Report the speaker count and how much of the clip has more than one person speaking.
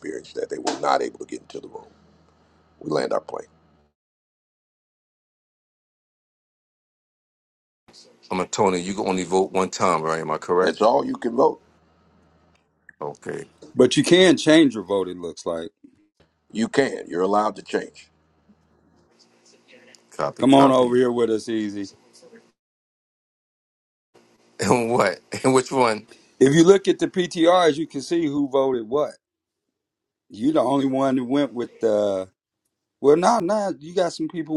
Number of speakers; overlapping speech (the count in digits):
3, about 2%